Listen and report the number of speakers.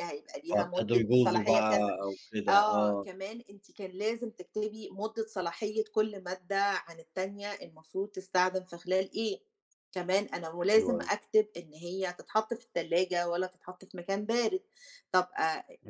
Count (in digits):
2